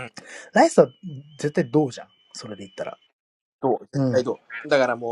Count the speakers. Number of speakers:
two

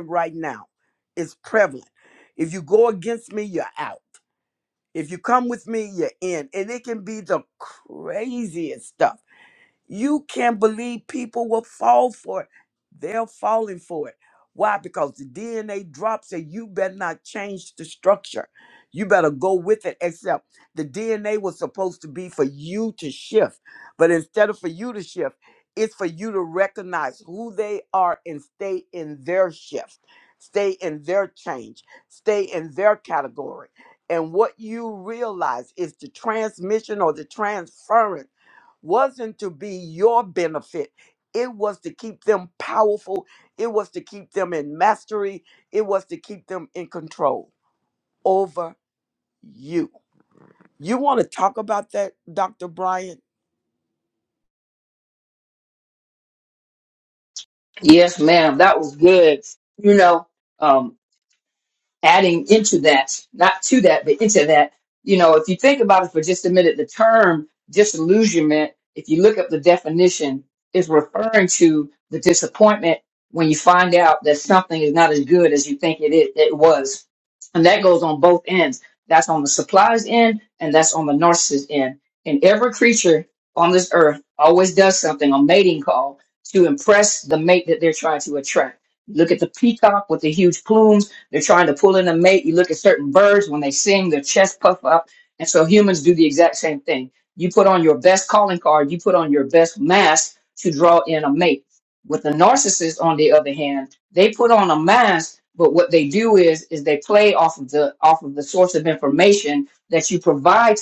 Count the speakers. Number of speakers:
two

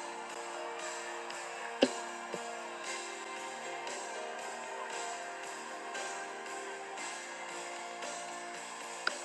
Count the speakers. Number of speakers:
zero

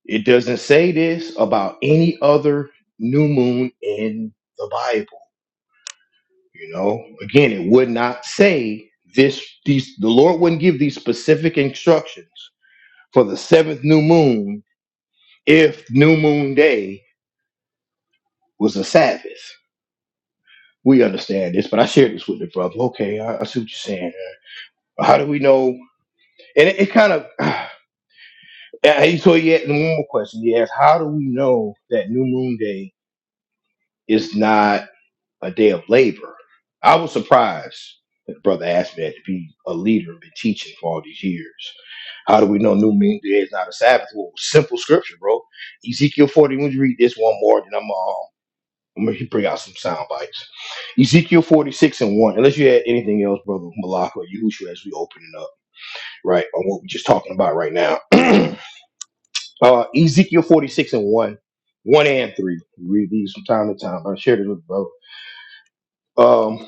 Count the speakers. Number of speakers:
one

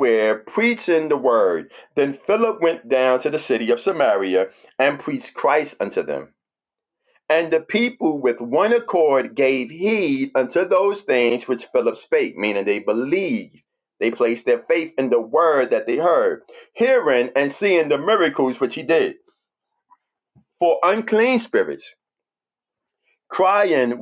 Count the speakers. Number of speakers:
one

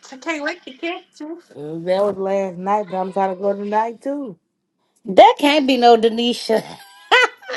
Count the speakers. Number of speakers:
three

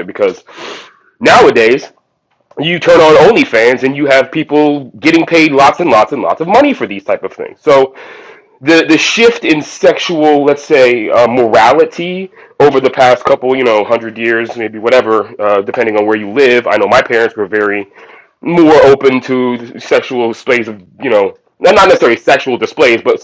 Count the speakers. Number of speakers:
one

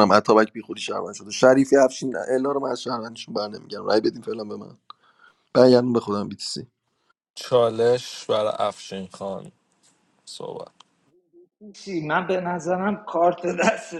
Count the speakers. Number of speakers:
three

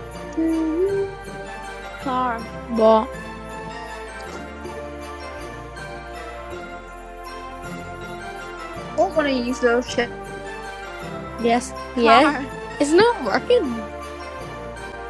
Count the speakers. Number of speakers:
three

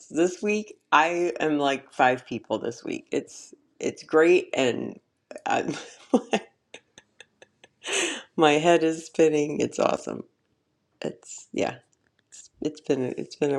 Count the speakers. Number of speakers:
one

